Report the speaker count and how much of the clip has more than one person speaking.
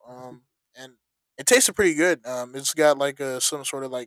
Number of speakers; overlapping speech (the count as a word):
one, no overlap